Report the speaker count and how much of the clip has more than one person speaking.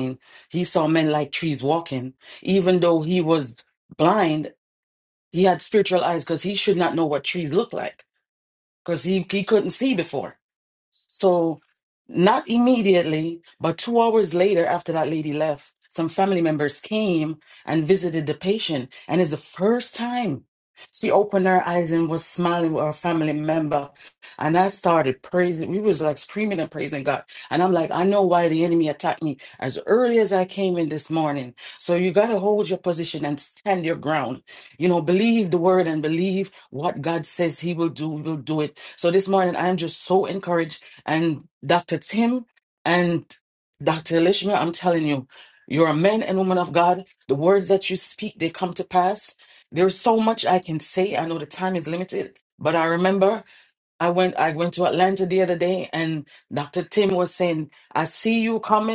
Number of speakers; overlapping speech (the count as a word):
one, no overlap